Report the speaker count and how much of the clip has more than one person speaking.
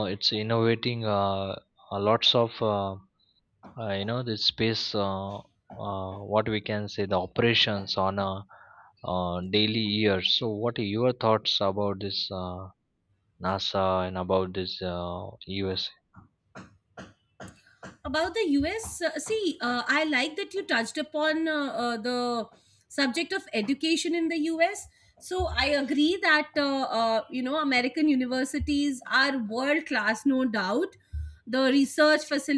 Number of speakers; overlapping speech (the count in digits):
2, no overlap